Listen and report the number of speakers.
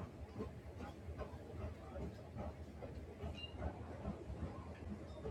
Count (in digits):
0